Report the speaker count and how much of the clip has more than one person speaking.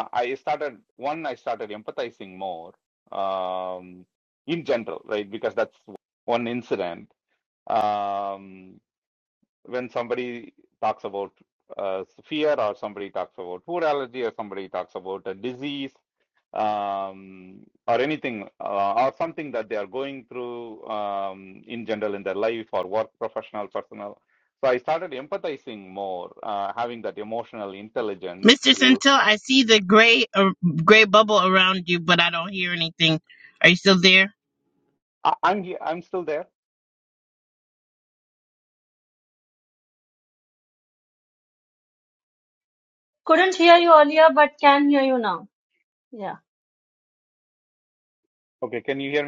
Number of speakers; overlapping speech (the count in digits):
3, about 1%